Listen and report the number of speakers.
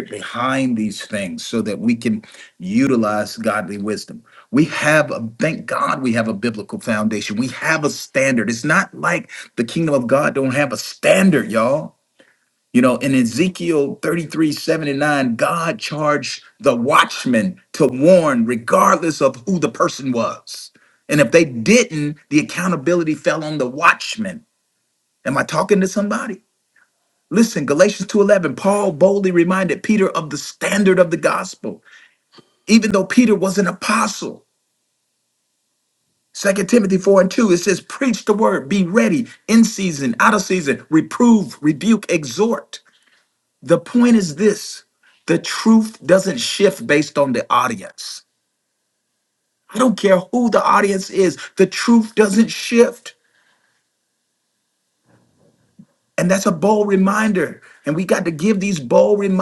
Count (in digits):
1